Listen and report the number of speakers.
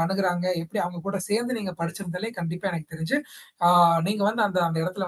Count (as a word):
one